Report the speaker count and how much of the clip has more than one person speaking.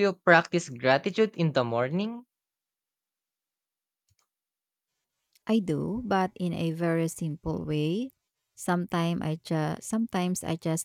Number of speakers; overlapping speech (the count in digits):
2, no overlap